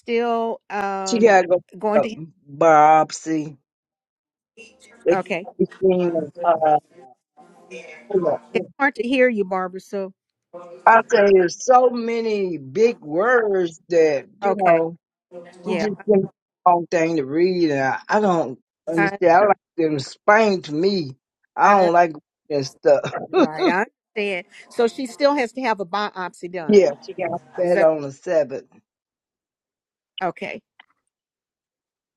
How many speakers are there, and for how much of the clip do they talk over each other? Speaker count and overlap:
2, about 6%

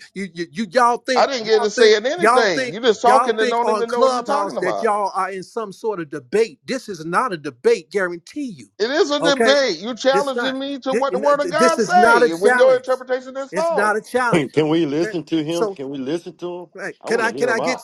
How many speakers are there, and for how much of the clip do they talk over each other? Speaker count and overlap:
3, about 43%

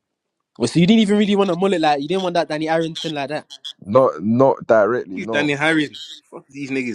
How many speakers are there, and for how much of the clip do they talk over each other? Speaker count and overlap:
3, about 5%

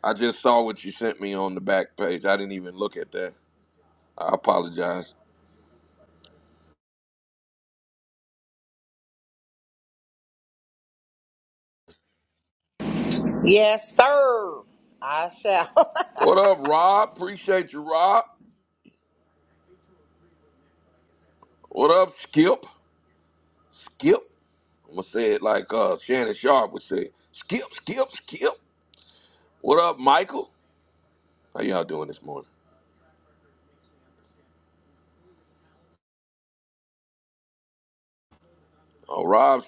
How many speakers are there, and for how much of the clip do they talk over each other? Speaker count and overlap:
2, no overlap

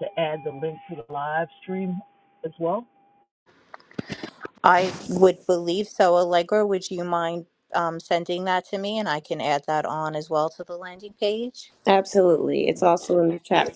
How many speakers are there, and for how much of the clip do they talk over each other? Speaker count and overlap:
3, no overlap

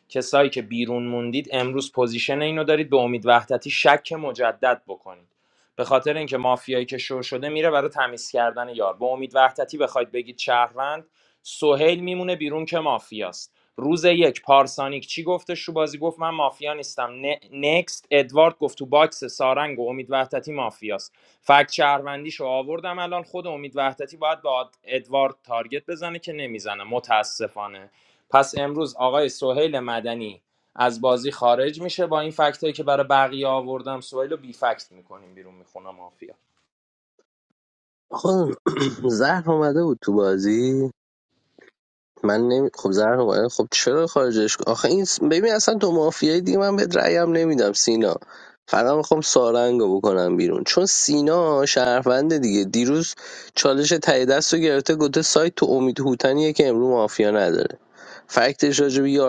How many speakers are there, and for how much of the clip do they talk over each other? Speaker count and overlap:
2, no overlap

